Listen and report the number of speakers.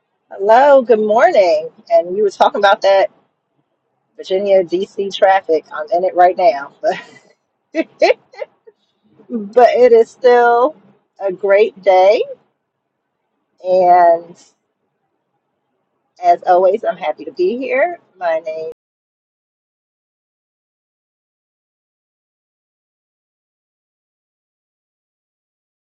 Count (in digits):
1